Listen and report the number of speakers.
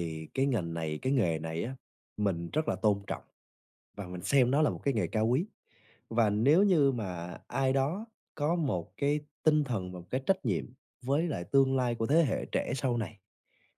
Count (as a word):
one